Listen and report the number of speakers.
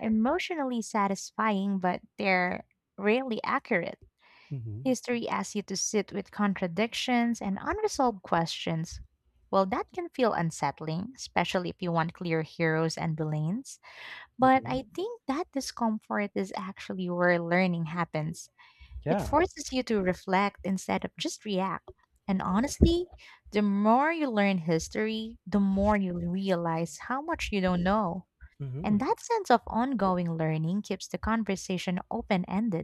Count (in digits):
2